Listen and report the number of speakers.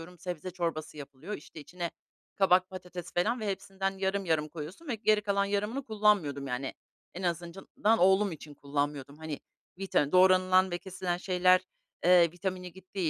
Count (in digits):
1